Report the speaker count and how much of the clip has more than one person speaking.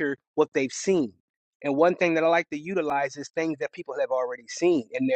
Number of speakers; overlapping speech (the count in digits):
1, no overlap